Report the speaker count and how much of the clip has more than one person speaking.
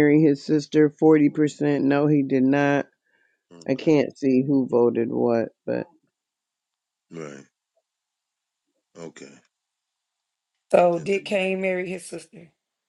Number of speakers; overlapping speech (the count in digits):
3, about 5%